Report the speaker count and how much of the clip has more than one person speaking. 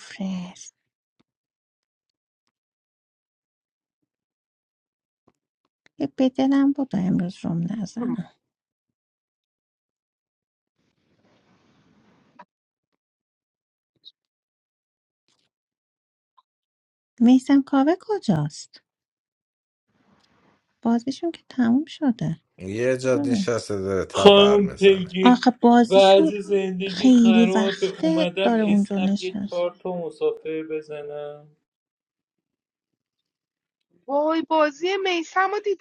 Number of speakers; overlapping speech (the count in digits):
4, about 12%